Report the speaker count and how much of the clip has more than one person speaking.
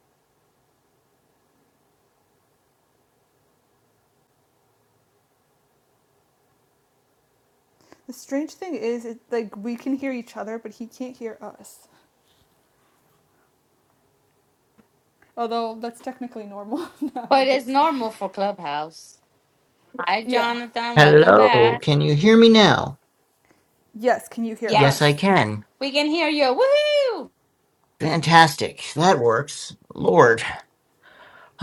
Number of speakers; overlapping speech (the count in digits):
3, about 6%